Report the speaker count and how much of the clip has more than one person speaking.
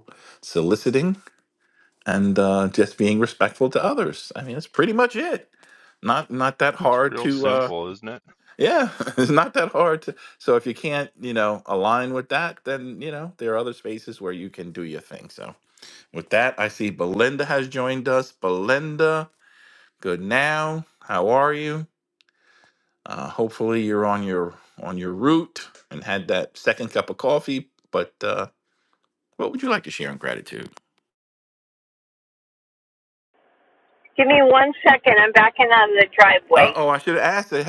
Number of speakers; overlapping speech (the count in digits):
3, about 3%